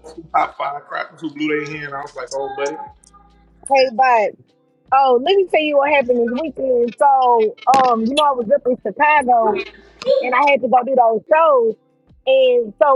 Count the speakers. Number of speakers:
2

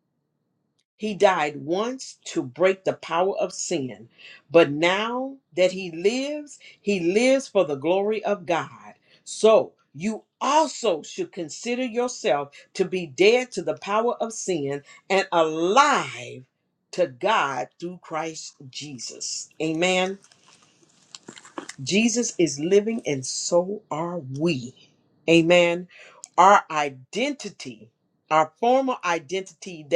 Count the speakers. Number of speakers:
1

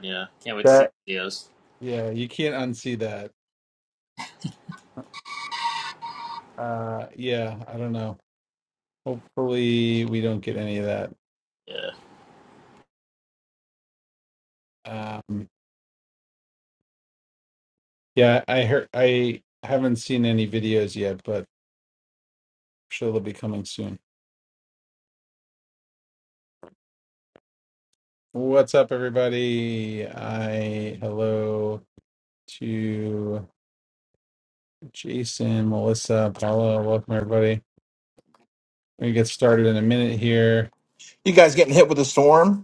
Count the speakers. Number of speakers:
3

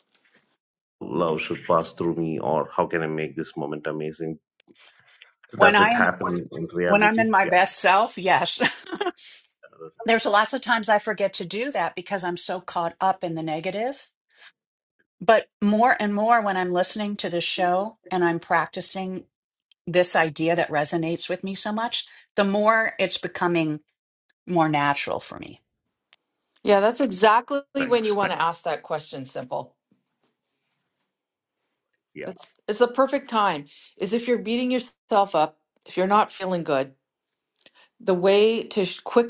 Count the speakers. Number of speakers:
3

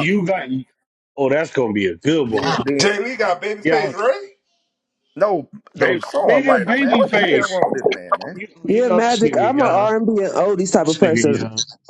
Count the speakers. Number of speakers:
4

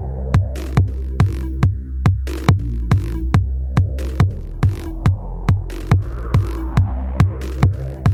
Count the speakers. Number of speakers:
0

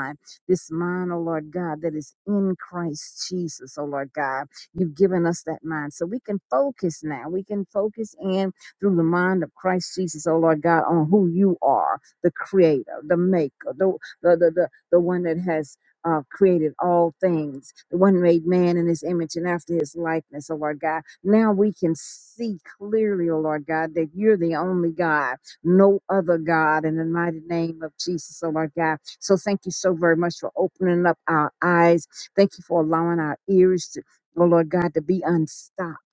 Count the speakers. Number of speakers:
1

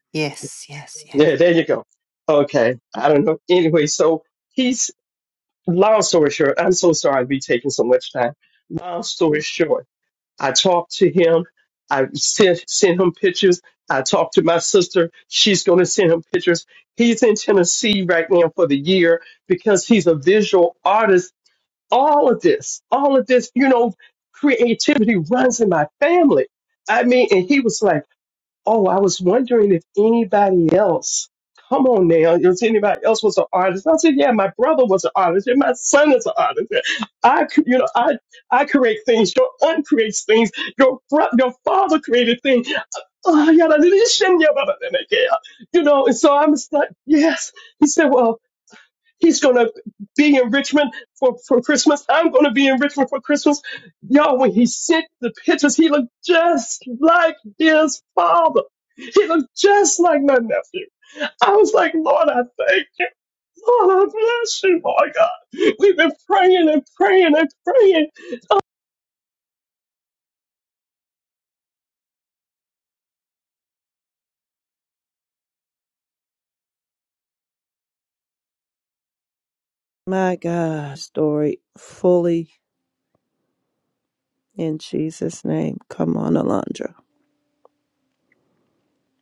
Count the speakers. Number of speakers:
3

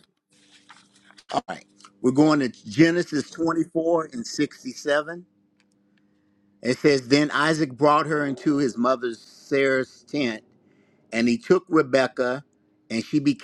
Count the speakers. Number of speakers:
1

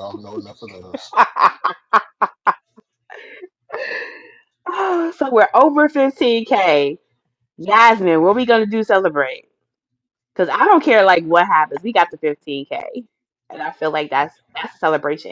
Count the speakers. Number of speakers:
2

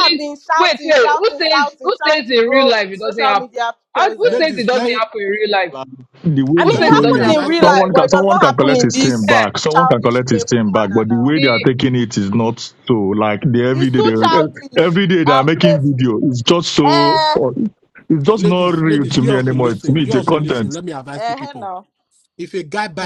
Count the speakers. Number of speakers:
4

